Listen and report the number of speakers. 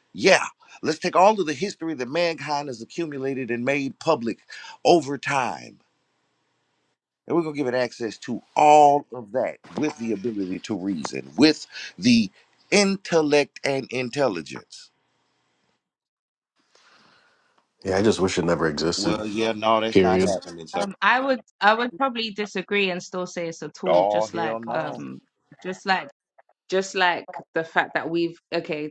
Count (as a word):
three